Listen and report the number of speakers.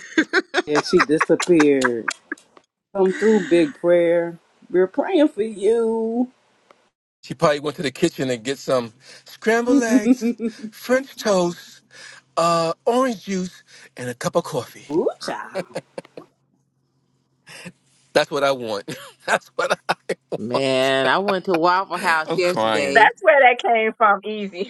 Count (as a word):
four